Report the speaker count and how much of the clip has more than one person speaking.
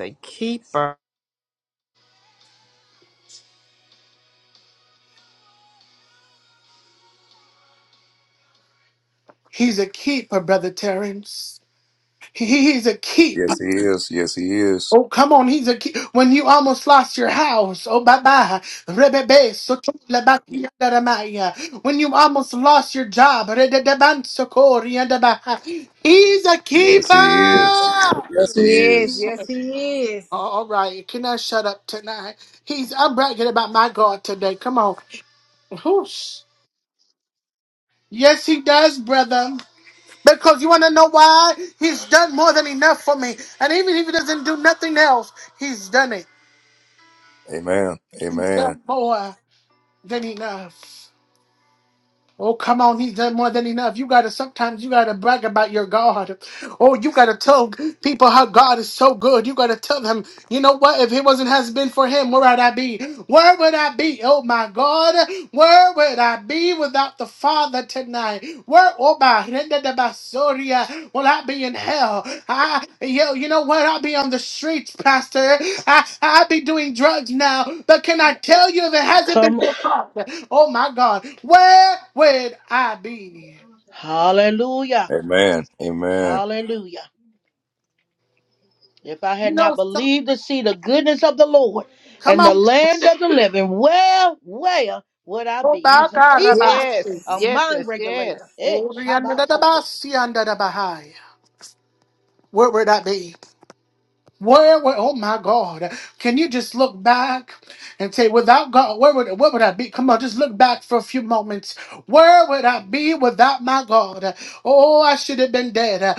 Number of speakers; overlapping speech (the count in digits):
5, about 7%